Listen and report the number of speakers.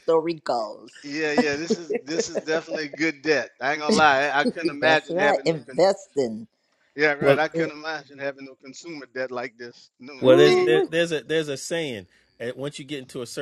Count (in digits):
3